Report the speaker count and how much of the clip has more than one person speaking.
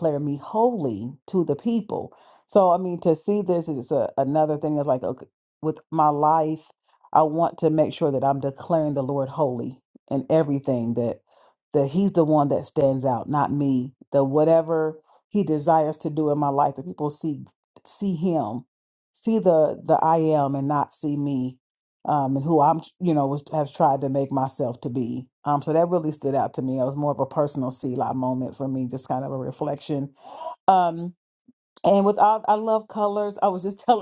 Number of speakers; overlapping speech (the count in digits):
1, no overlap